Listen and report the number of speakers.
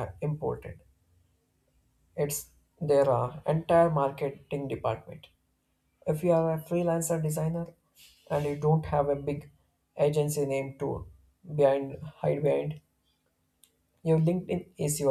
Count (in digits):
1